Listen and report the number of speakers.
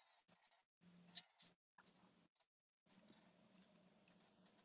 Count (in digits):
0